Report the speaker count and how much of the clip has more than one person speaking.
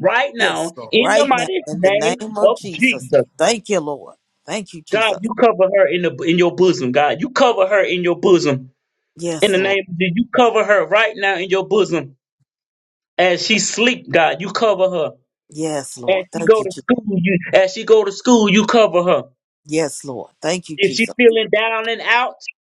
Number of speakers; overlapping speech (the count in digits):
2, about 19%